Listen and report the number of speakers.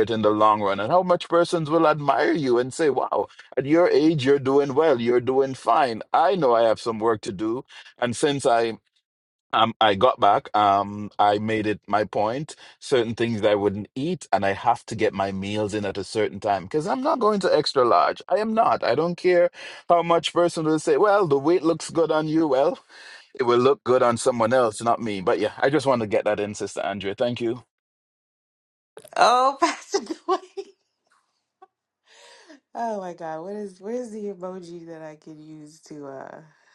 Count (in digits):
2